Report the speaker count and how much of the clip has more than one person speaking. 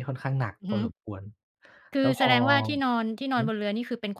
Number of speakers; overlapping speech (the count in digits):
2, about 17%